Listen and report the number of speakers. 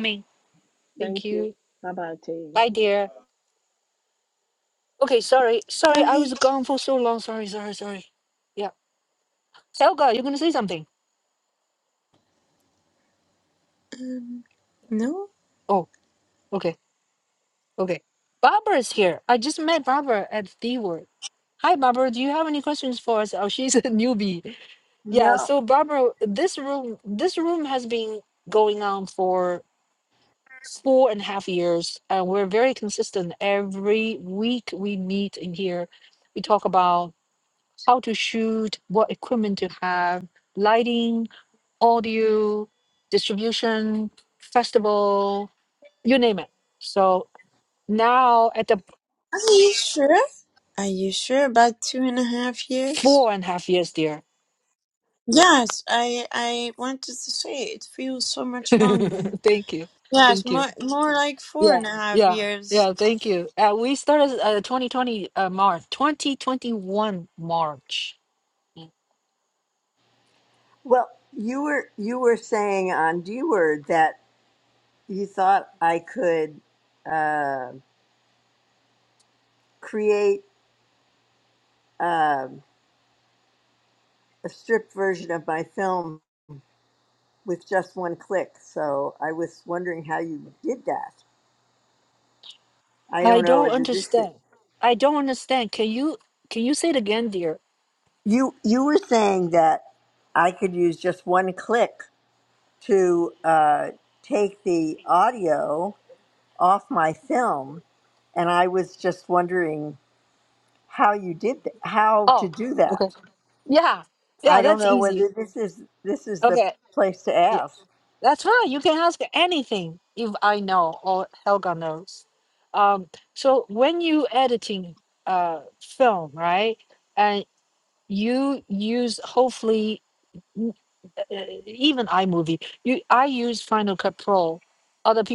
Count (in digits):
4